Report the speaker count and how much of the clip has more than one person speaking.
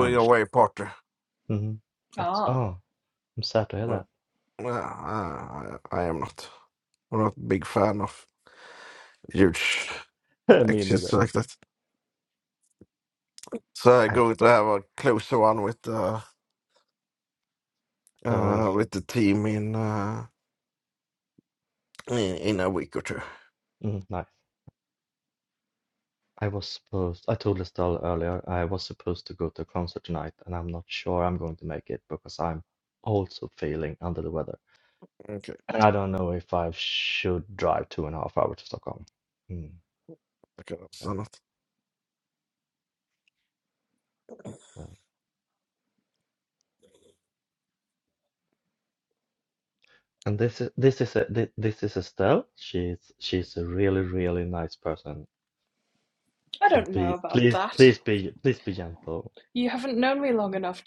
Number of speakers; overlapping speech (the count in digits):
3, about 5%